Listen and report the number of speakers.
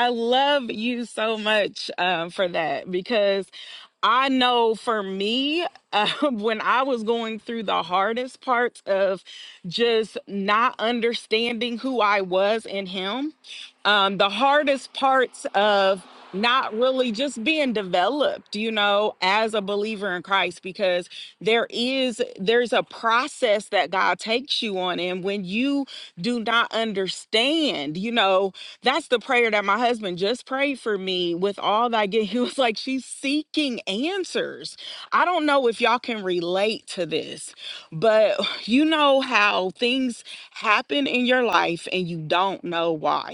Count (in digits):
1